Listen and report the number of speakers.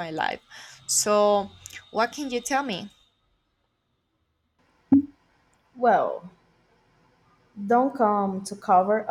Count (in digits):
2